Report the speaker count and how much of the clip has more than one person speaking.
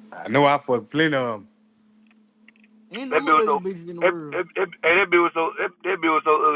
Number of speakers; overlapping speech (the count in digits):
3, about 13%